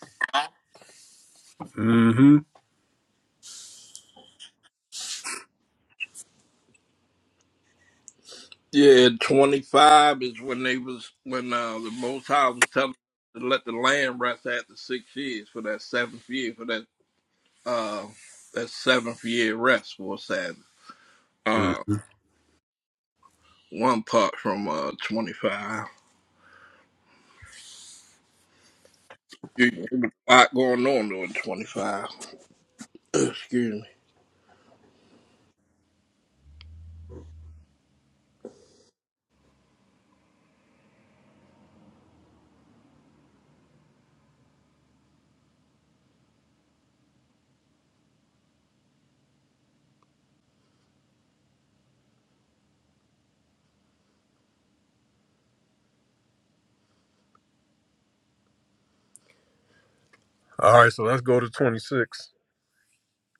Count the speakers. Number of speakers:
two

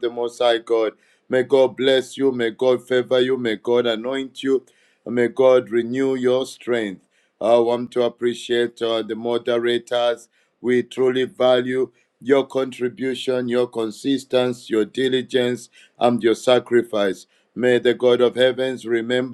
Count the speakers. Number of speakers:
one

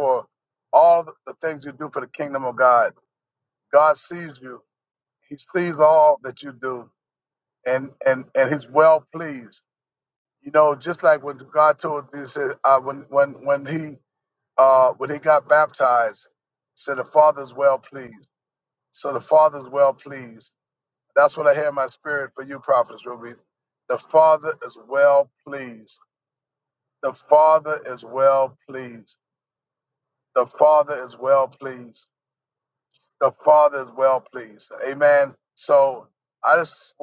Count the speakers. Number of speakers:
one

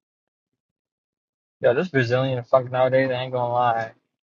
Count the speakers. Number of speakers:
one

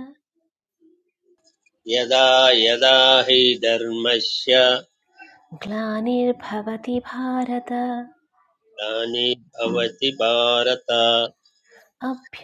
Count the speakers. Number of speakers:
two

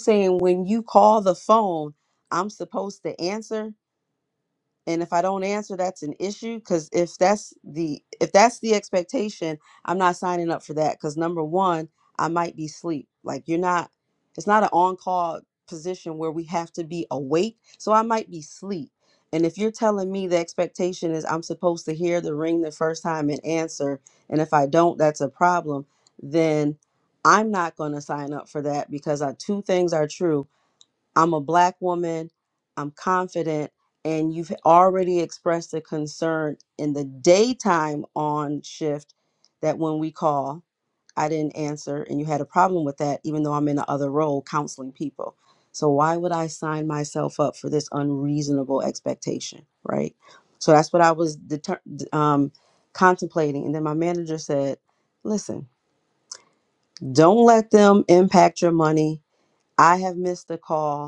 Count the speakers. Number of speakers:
one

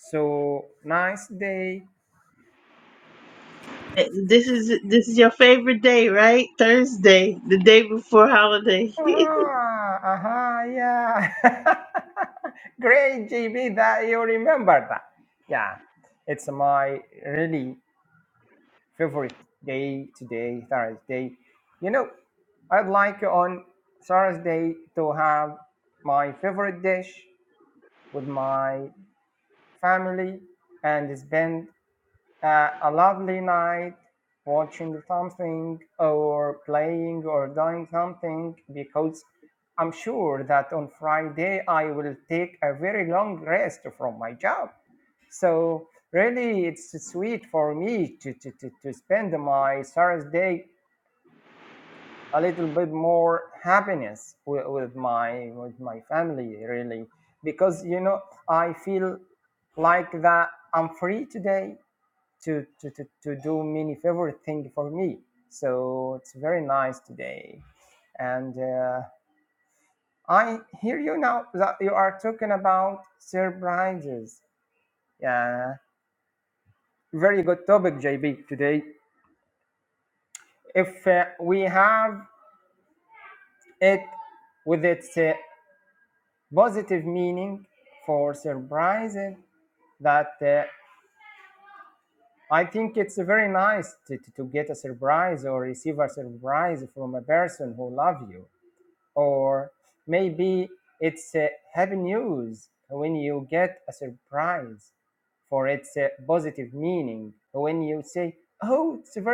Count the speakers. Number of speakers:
two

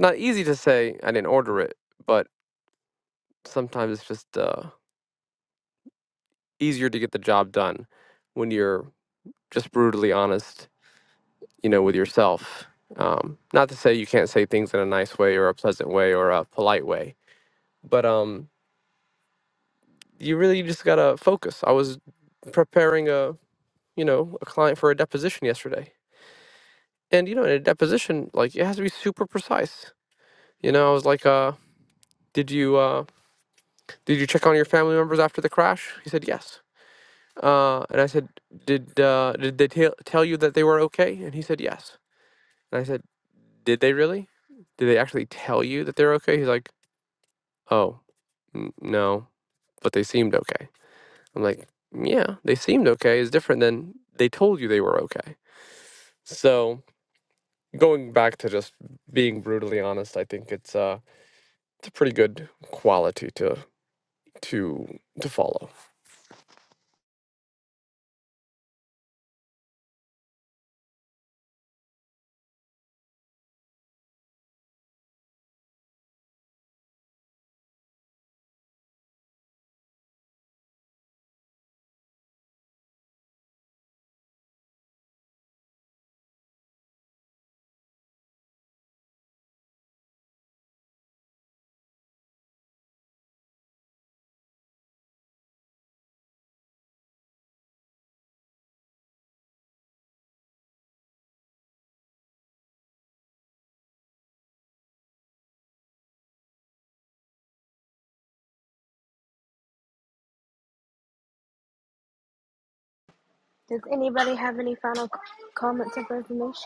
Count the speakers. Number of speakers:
two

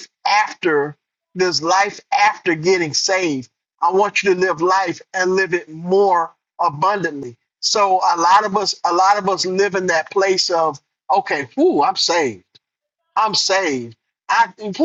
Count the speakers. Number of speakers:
one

